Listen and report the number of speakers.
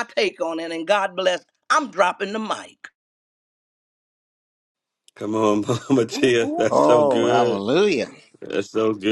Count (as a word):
three